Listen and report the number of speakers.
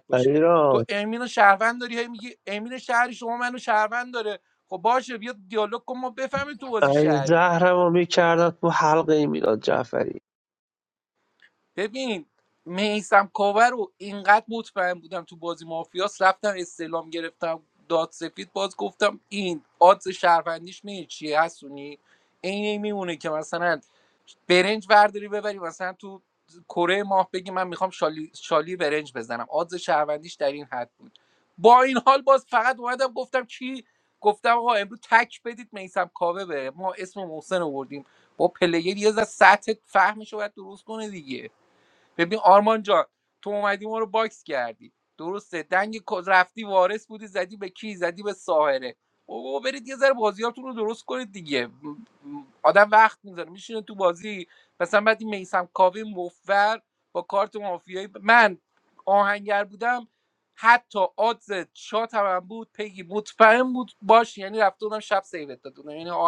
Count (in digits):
2